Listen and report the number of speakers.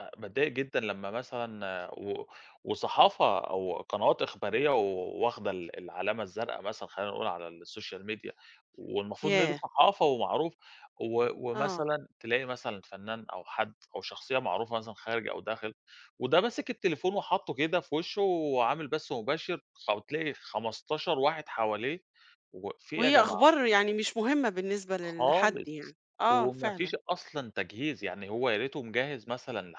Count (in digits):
2